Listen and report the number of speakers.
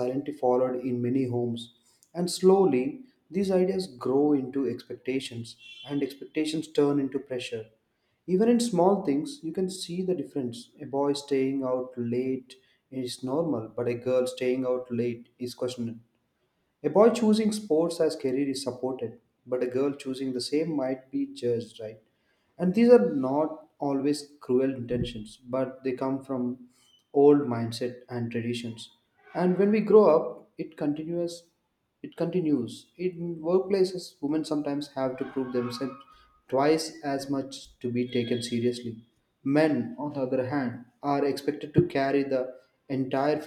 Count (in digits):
1